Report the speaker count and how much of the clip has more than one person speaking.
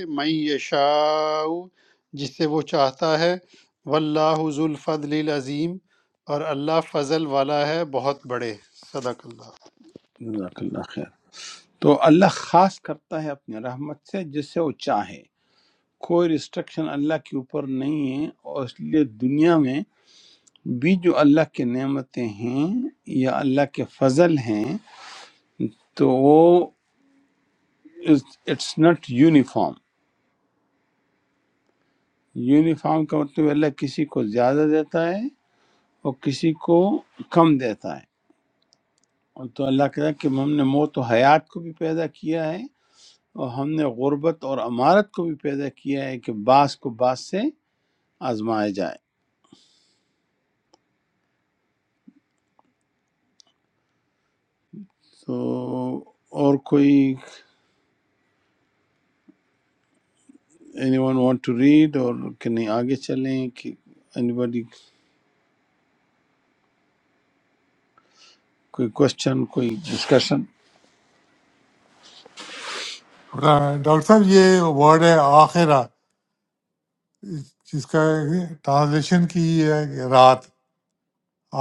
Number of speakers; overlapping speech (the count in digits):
3, no overlap